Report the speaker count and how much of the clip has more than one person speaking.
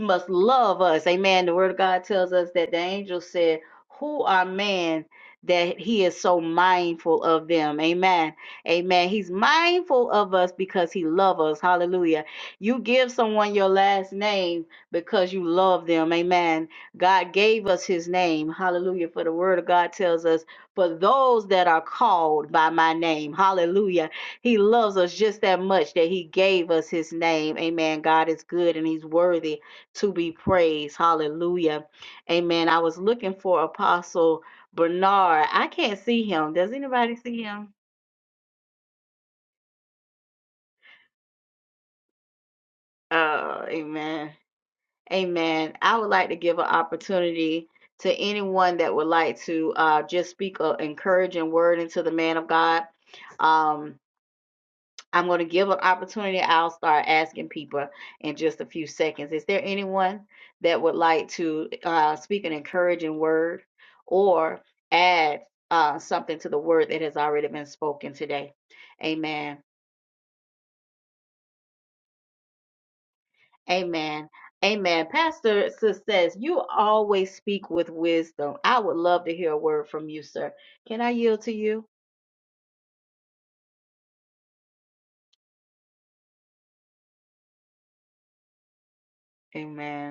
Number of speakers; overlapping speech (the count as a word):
one, no overlap